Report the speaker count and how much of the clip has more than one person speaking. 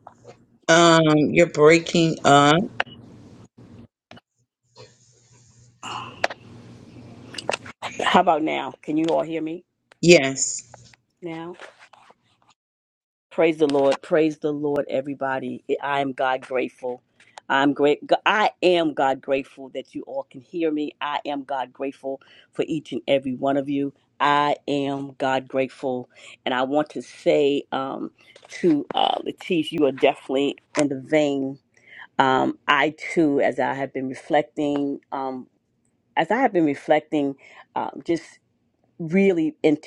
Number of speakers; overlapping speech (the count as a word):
two, no overlap